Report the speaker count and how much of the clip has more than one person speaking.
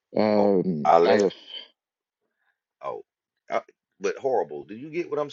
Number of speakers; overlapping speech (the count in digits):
2, about 11%